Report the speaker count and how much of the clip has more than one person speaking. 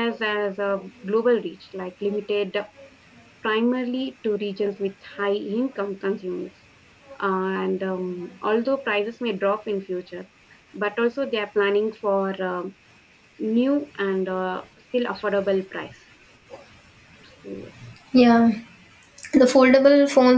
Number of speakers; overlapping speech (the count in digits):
2, no overlap